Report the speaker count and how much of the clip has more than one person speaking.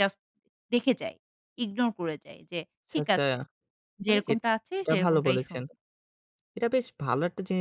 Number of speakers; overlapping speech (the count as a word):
two, about 19%